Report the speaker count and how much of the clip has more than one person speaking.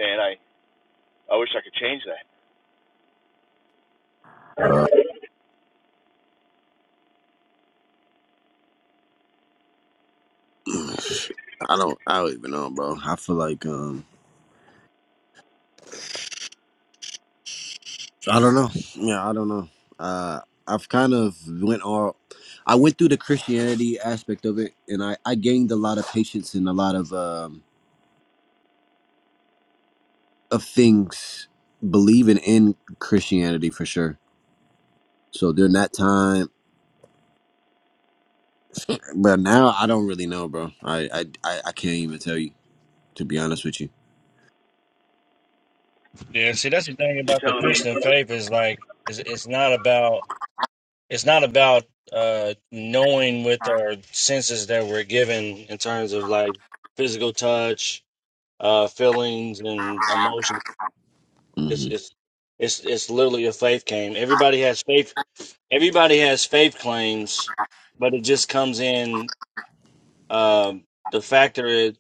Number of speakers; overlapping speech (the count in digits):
3, about 1%